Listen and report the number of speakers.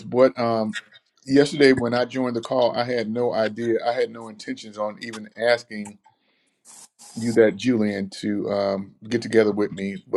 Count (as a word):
one